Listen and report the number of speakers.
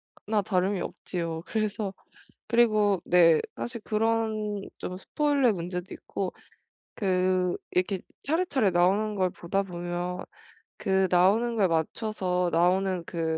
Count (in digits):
1